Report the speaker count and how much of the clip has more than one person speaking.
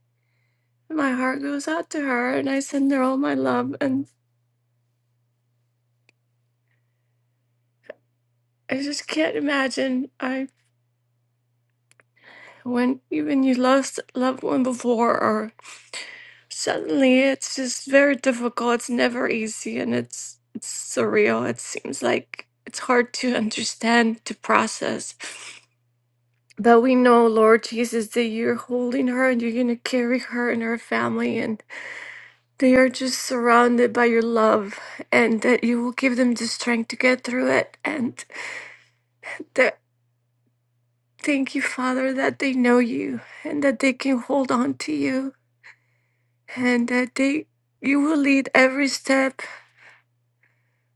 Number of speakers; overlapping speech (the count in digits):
1, no overlap